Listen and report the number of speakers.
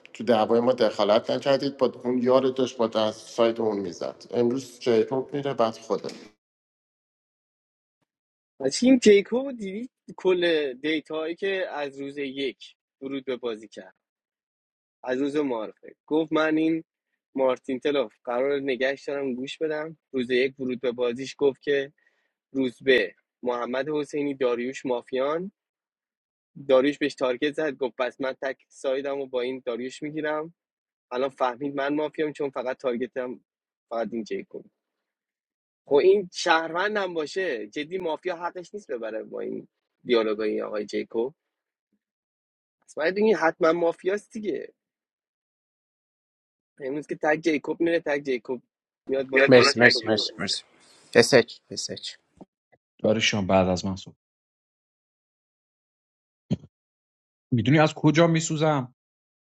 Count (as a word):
four